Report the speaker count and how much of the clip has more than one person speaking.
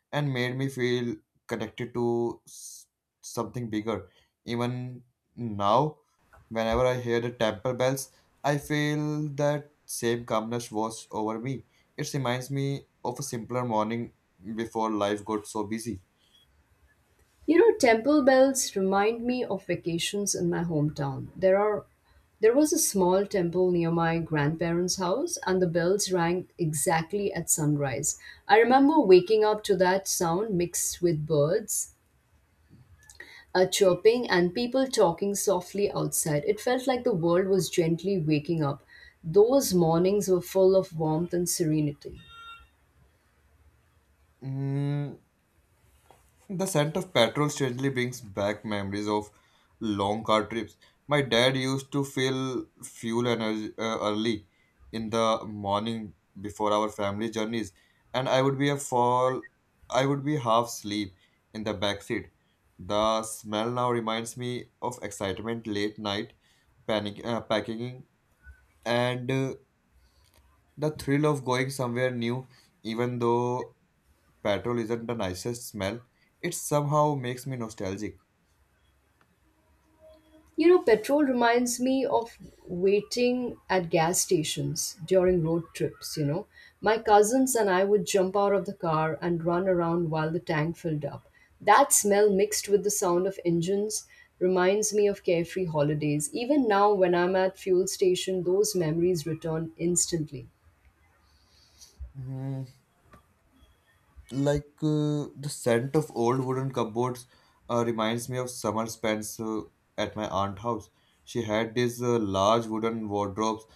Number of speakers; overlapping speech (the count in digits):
2, no overlap